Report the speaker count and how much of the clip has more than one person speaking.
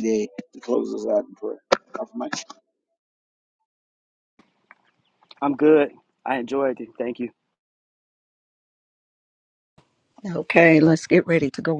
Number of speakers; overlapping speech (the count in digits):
3, no overlap